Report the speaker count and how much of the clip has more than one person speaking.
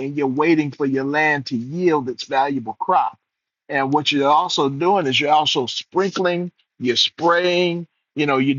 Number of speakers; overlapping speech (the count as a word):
one, no overlap